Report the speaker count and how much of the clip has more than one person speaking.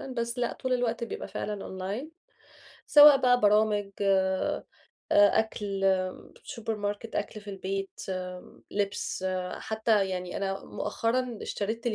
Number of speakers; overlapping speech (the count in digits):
1, no overlap